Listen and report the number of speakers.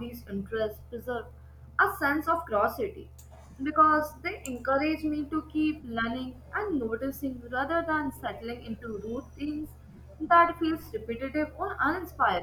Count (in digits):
1